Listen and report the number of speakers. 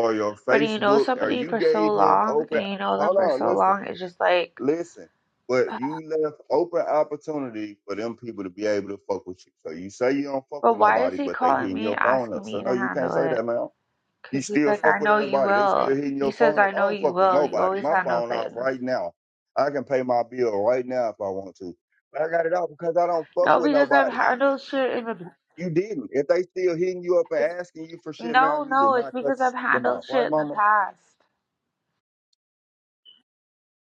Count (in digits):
2